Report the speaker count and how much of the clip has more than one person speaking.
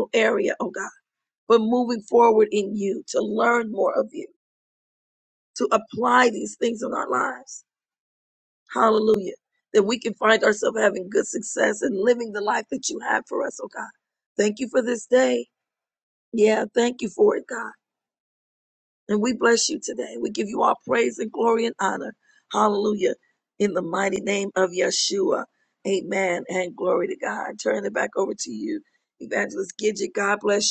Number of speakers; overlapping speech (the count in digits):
1, no overlap